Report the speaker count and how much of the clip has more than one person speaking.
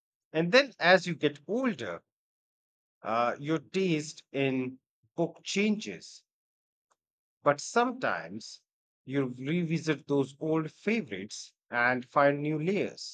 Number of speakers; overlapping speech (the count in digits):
1, no overlap